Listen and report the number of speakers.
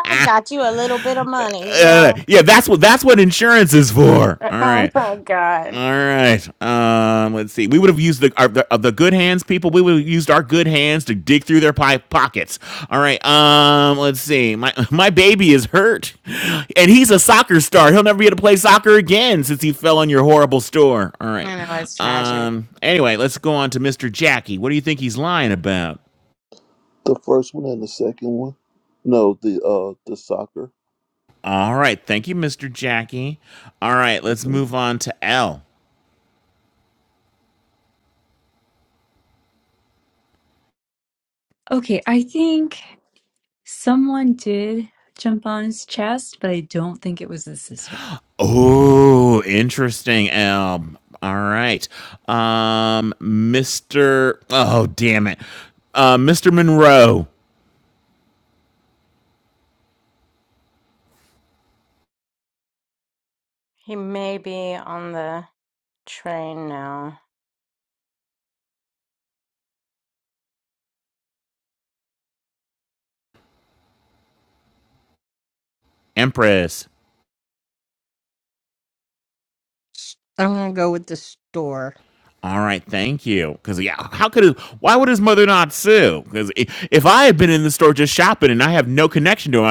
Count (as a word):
five